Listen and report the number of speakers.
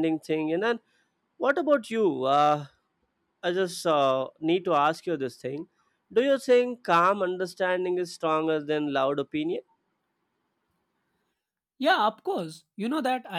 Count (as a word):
two